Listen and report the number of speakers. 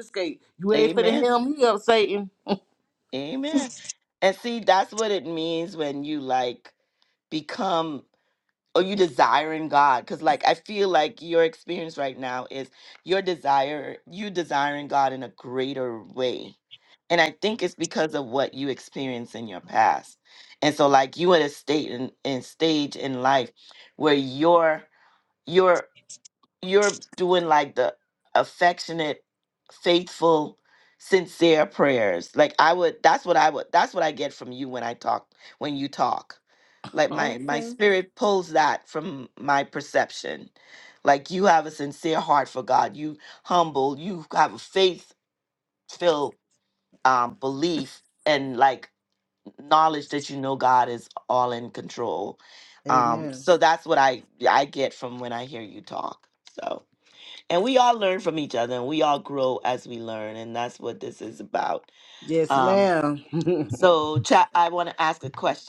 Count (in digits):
2